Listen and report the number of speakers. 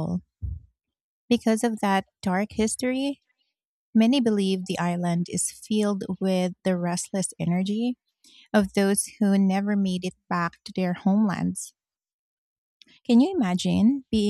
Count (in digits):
1